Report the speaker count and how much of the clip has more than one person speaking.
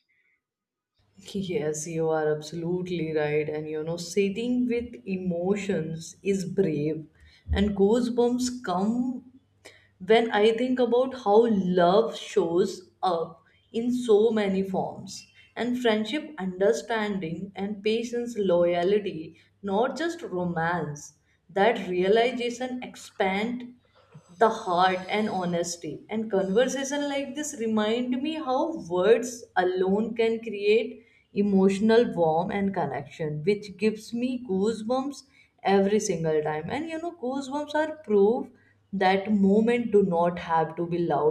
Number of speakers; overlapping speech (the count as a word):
one, no overlap